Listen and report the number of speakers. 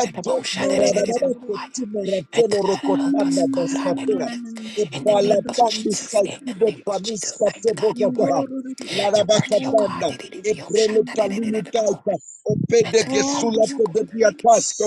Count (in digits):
3